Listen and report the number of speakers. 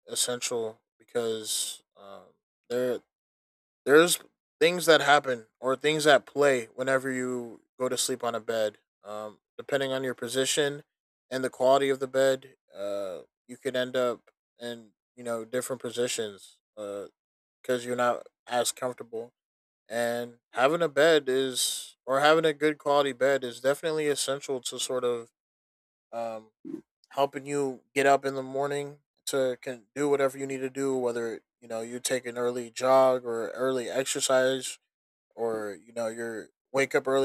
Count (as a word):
one